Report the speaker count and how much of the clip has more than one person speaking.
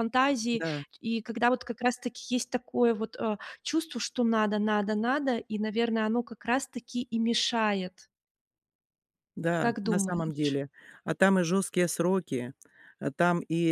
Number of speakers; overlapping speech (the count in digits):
2, about 8%